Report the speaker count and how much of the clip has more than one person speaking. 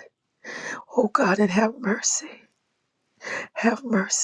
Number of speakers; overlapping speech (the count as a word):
one, no overlap